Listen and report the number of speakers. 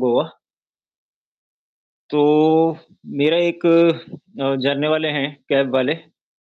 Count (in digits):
1